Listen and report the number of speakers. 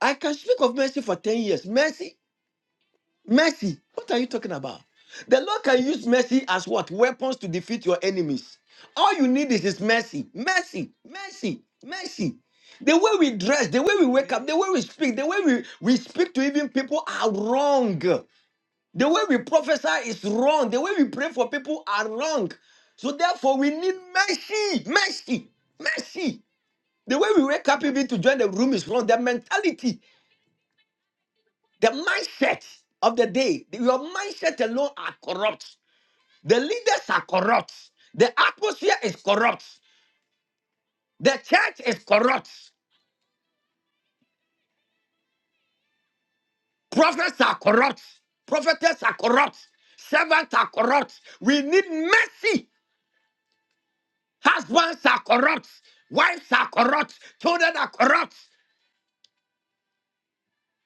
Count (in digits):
1